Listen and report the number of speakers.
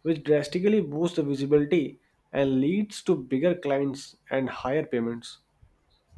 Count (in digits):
1